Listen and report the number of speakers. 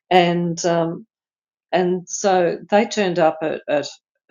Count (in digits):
1